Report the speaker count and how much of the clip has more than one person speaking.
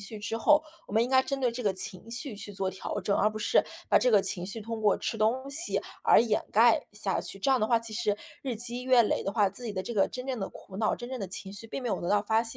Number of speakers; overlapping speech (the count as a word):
one, no overlap